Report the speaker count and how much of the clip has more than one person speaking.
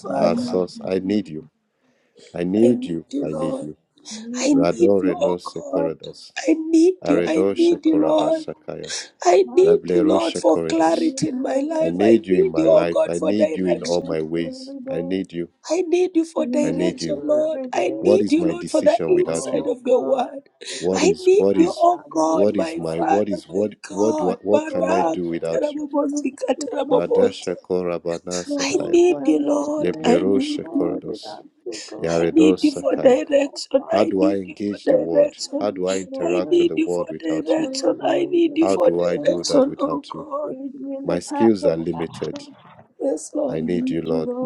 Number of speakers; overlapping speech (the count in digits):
3, about 76%